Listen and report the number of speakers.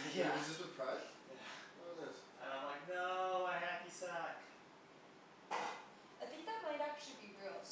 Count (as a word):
three